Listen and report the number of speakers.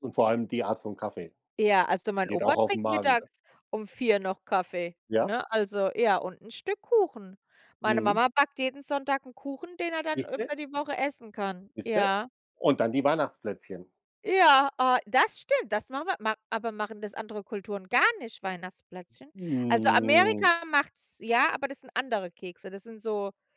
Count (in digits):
2